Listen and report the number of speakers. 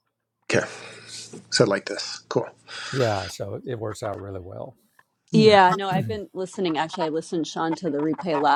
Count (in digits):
3